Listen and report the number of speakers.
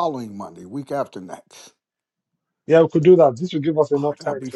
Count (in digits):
2